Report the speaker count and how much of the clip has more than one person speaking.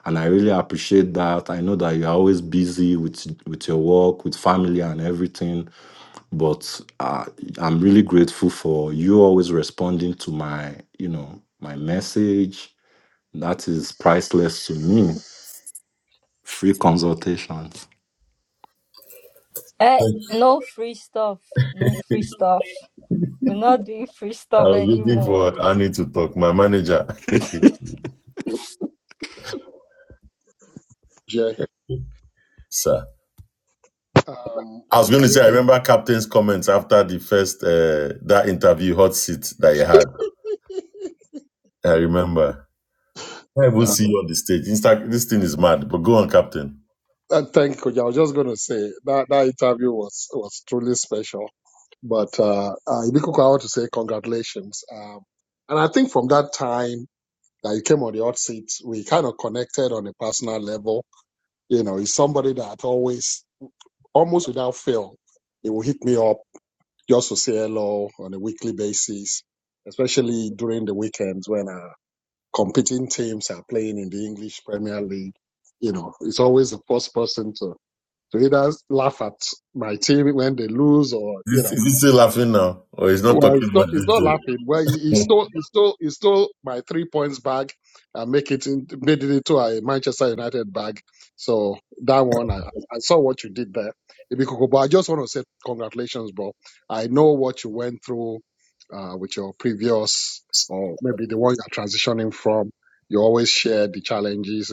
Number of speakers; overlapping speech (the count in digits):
4, about 3%